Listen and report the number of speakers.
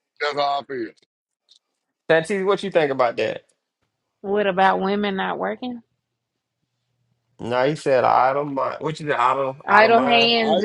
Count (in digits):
3